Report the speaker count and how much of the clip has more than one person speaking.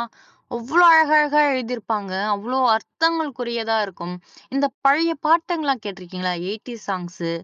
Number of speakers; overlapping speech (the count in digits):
1, no overlap